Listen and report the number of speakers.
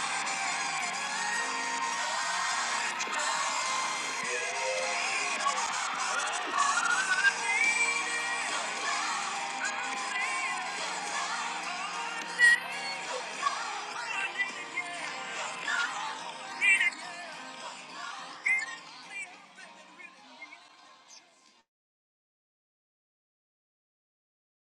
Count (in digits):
0